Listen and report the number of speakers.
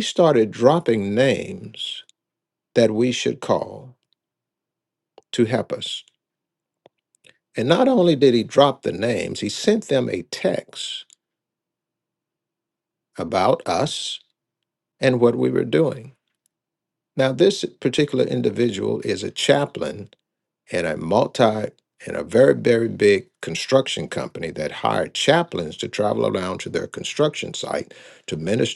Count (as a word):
one